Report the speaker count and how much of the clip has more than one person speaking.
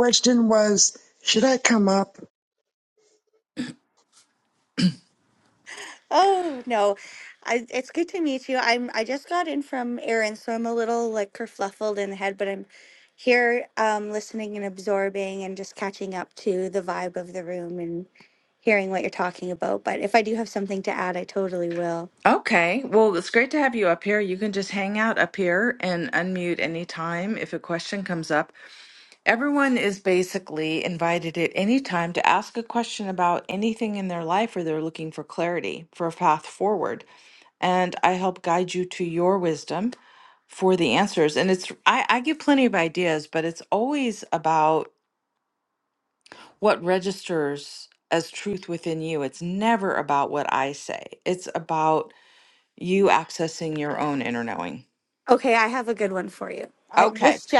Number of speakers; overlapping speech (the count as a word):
three, about 1%